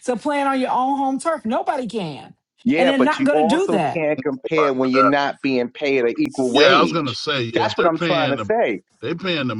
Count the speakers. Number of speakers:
3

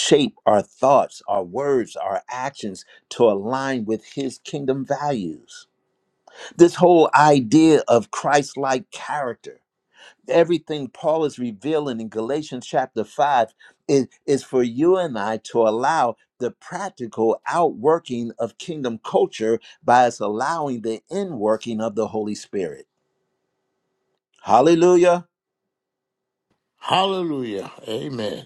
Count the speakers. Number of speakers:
2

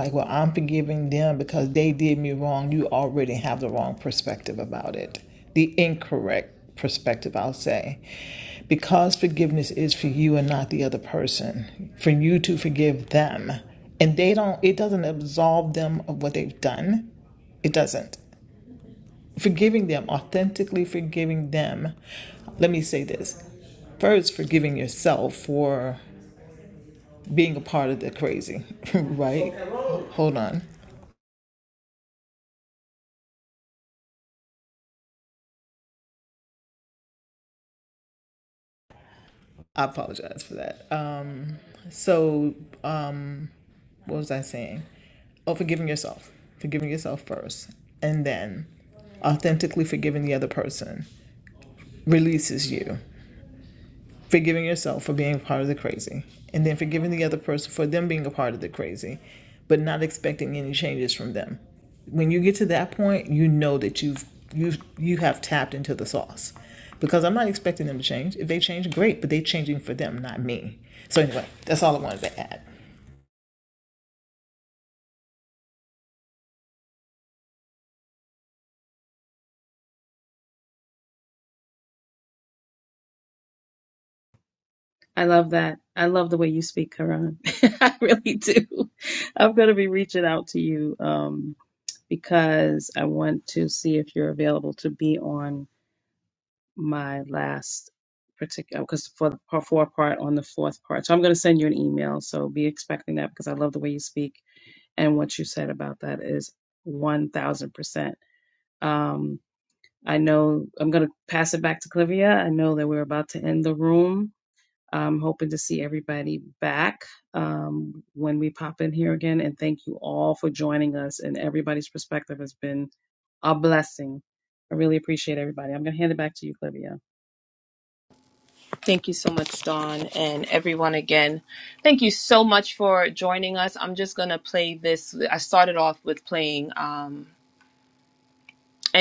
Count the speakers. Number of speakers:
3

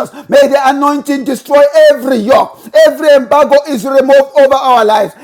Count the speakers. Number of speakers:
1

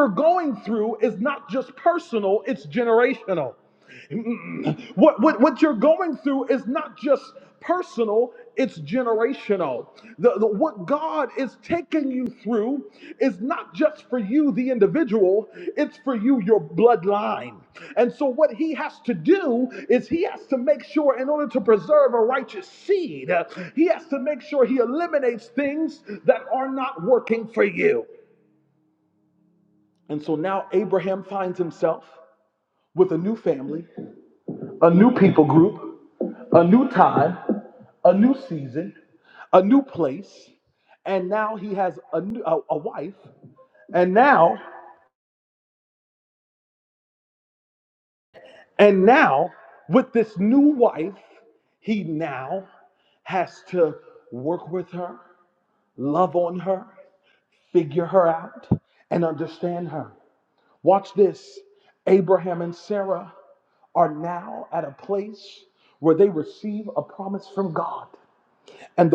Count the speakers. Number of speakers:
1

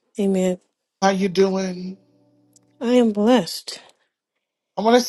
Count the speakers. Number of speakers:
2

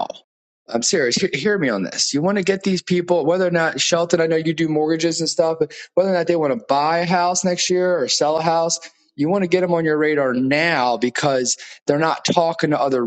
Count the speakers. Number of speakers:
1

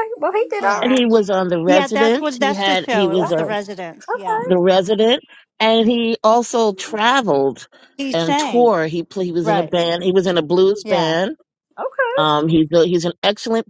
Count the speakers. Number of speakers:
3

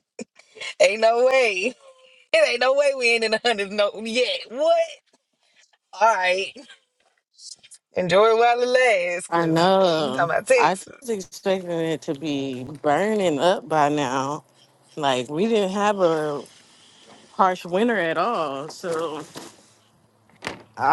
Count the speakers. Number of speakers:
2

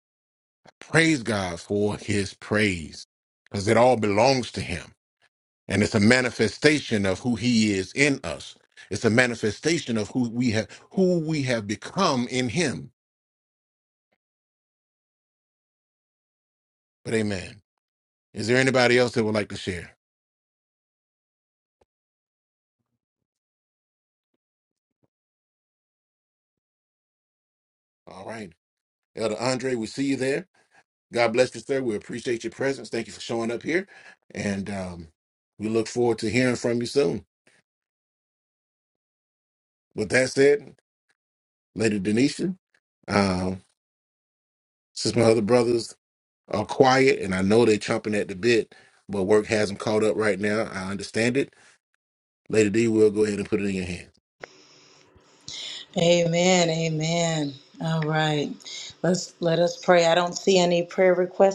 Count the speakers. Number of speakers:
2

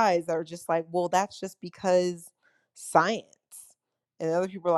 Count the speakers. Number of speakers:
1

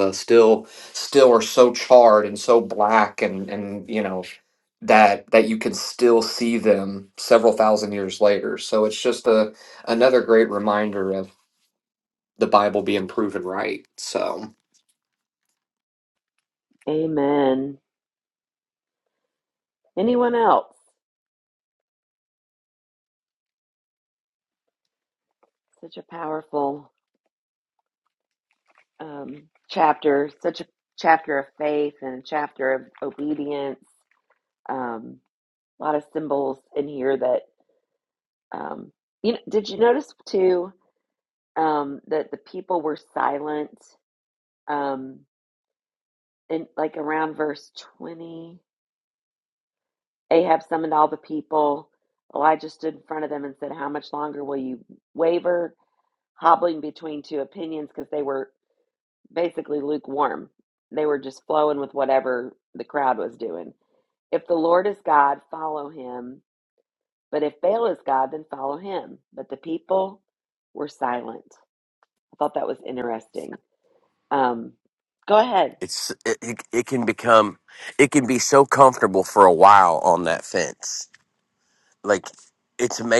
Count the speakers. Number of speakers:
3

